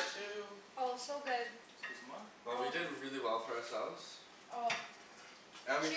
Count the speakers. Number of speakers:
3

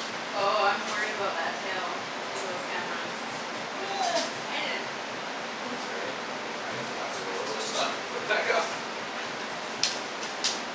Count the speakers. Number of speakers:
2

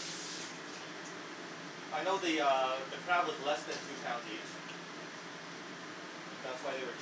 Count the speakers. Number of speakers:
1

